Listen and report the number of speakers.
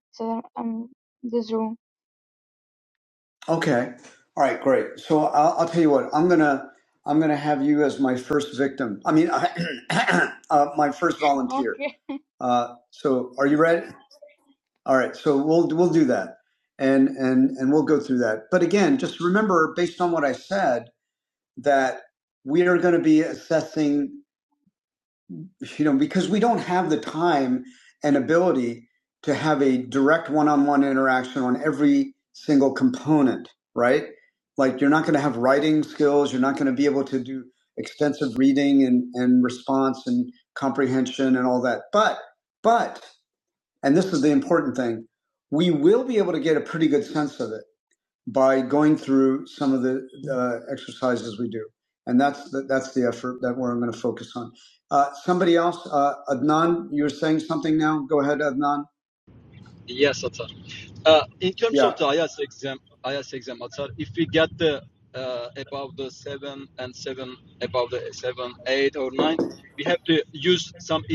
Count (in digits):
3